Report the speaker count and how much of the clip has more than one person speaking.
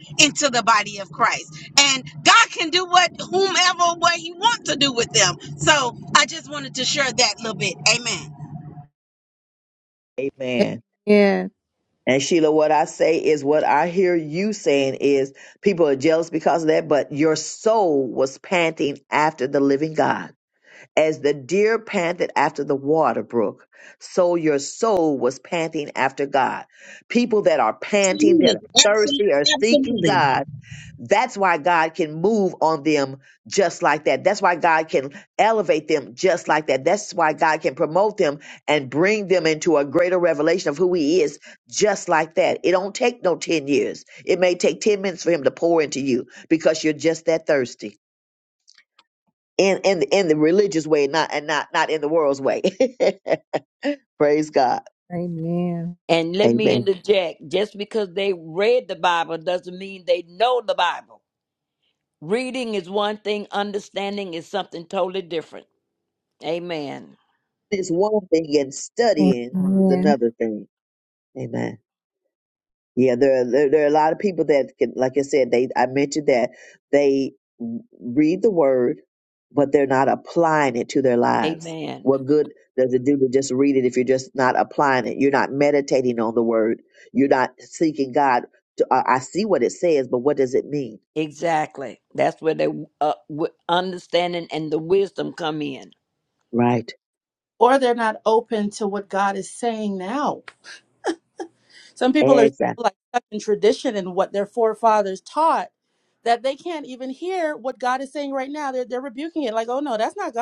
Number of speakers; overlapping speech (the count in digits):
5, about 3%